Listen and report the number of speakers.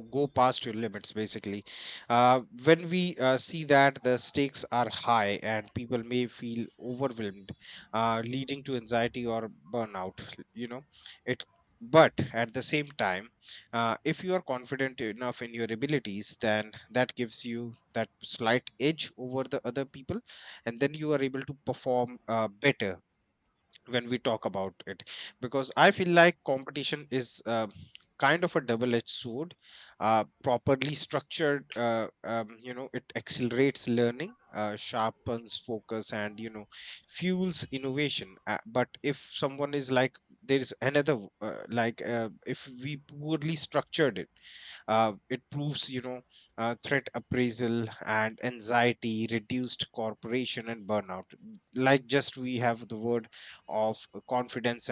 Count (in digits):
1